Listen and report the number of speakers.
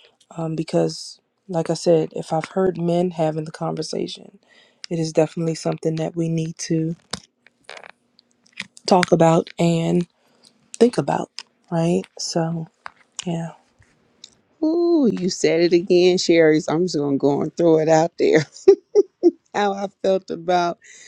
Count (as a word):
two